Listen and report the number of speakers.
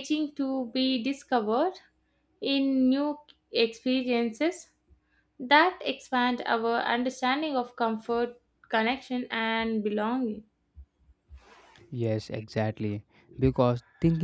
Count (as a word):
two